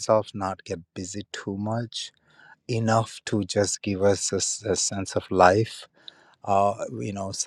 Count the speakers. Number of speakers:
one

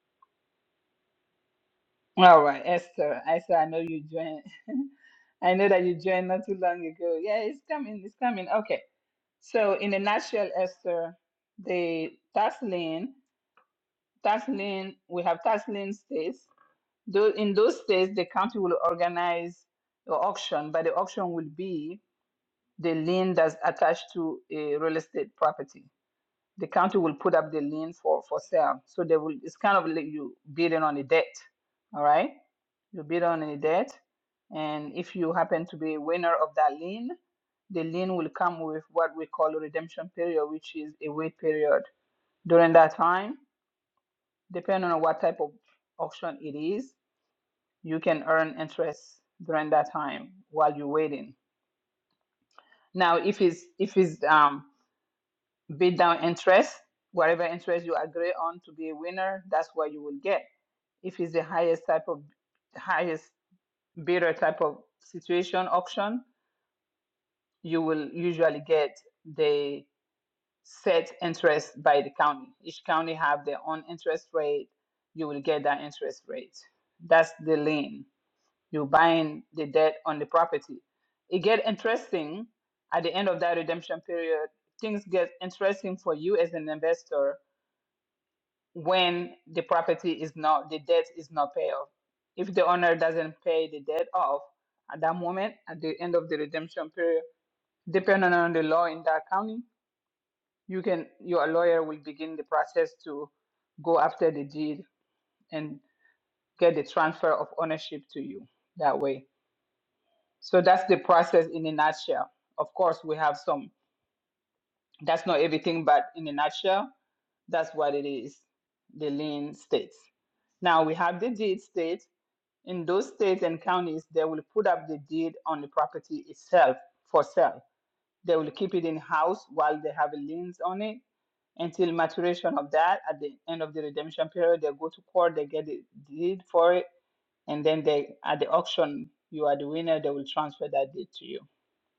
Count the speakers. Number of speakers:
one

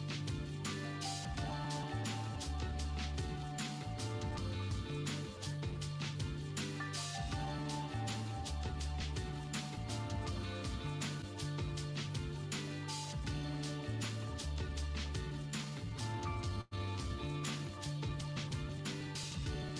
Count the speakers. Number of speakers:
zero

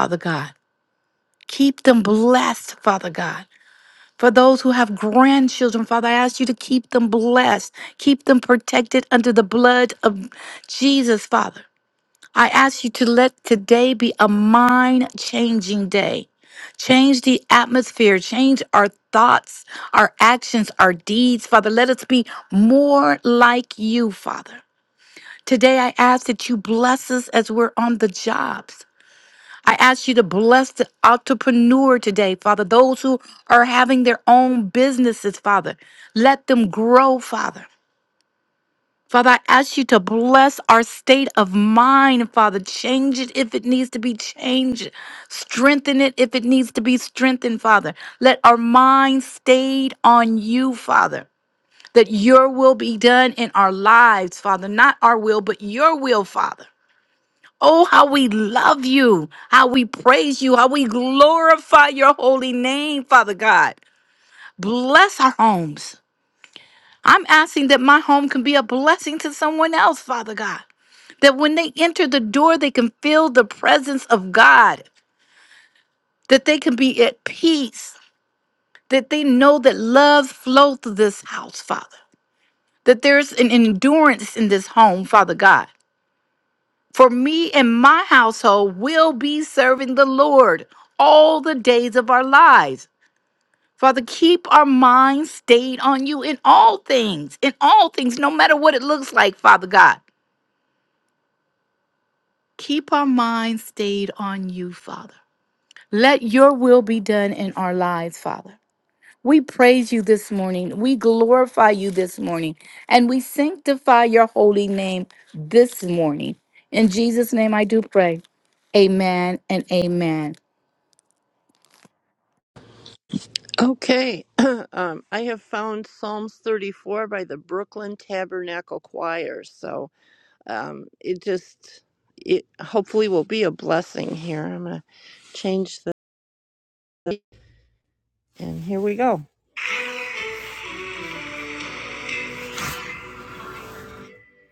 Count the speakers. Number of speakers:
two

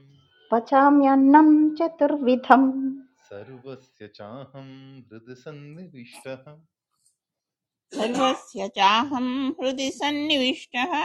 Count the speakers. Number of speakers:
three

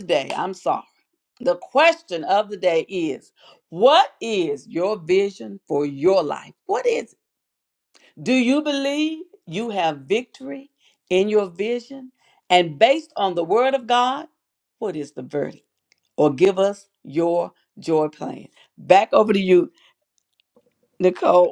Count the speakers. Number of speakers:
one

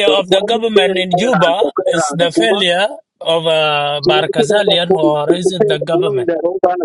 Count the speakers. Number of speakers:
two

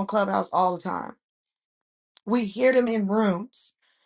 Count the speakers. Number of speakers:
one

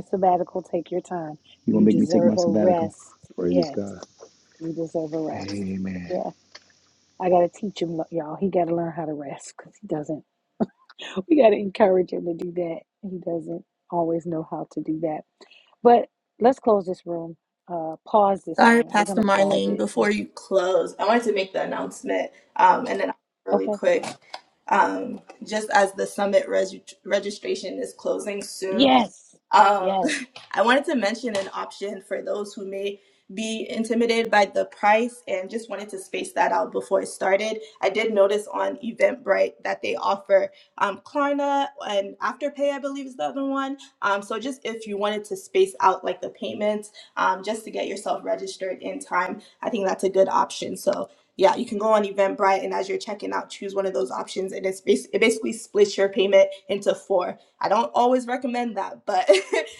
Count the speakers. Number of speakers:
three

